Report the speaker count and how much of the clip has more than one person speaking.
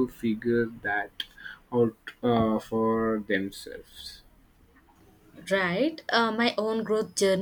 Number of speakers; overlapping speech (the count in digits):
2, no overlap